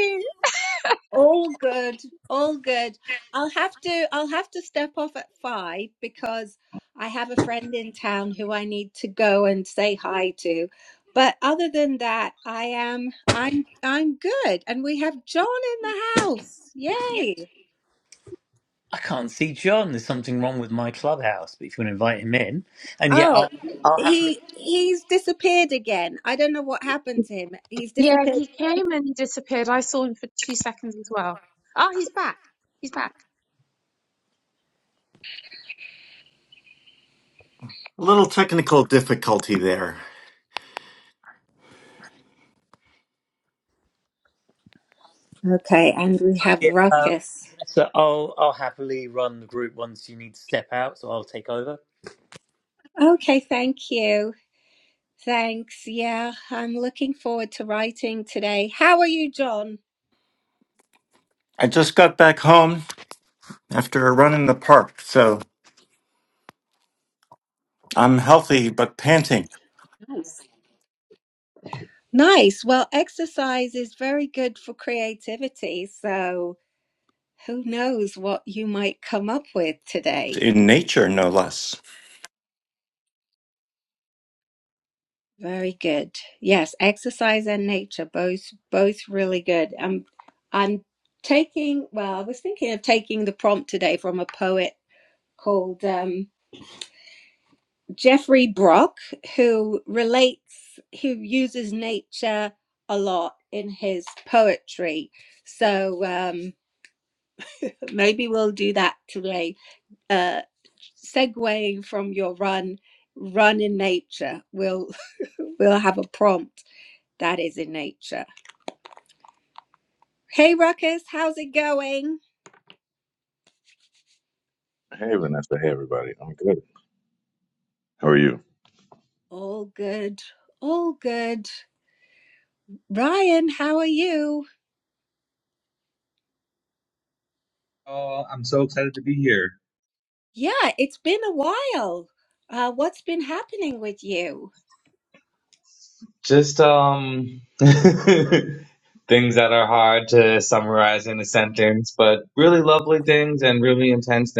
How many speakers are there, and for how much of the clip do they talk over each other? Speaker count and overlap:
6, about 1%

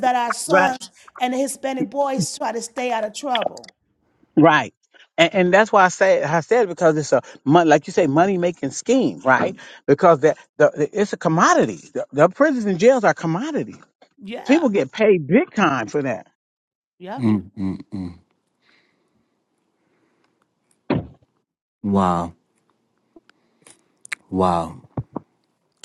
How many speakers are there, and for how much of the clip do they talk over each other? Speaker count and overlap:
3, about 2%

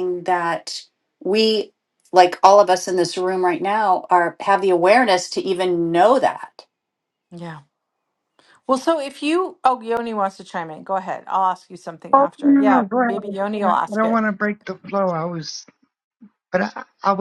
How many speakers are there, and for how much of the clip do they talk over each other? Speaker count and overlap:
3, about 12%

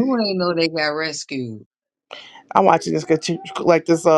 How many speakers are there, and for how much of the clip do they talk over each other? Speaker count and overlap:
2, about 4%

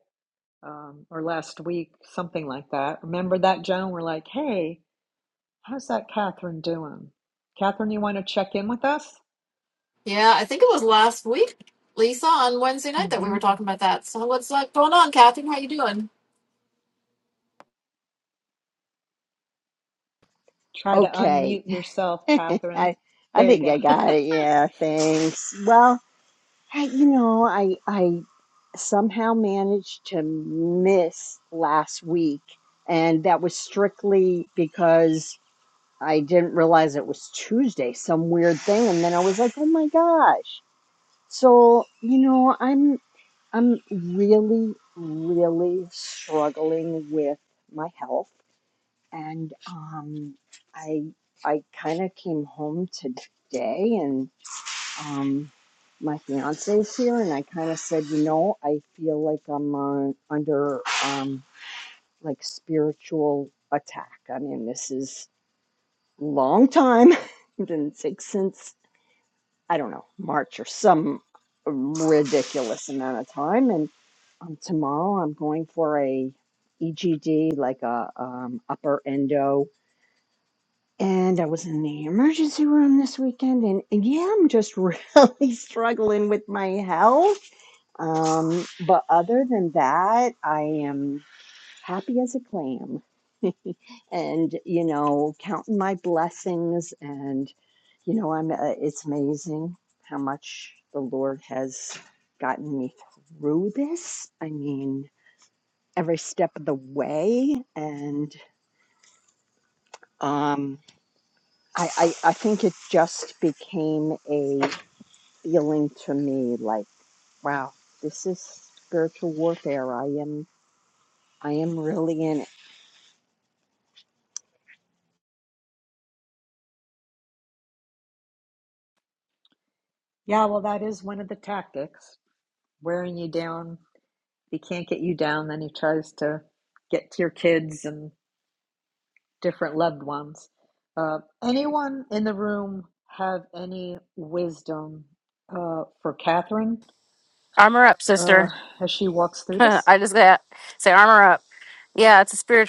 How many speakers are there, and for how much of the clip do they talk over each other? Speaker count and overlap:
4, about 1%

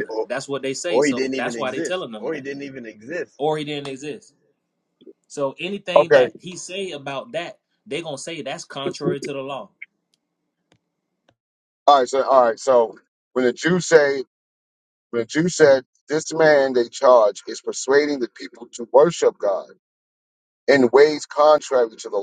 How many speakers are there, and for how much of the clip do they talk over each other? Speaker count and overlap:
3, about 10%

